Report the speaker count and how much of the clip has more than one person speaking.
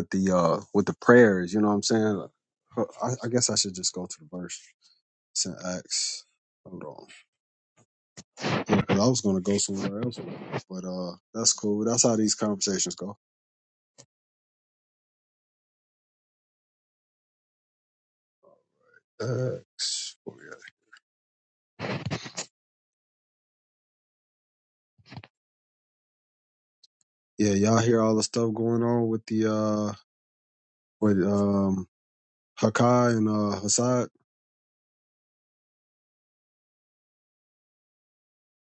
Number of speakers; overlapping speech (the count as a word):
one, no overlap